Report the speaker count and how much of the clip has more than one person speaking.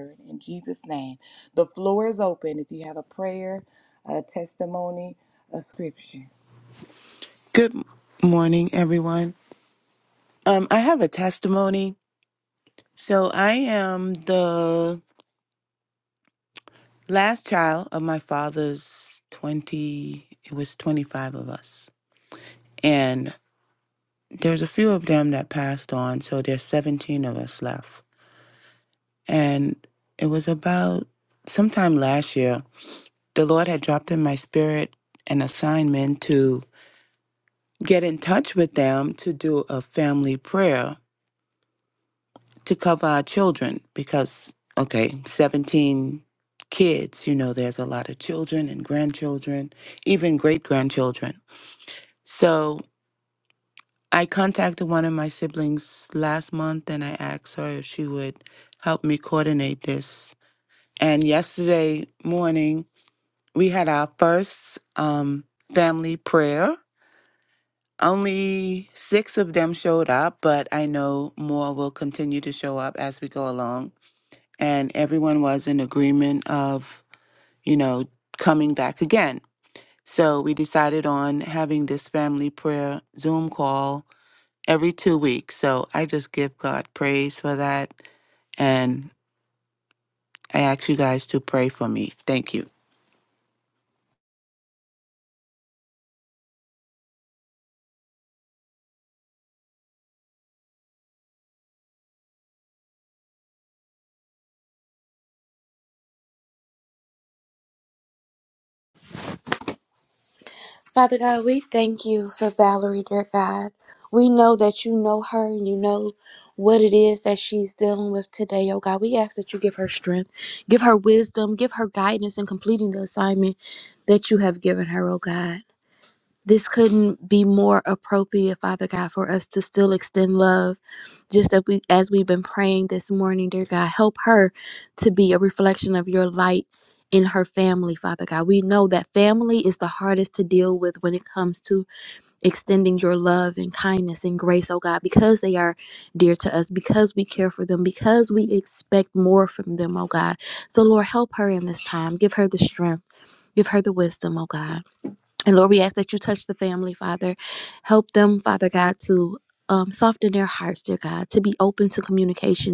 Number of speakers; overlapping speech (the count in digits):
3, no overlap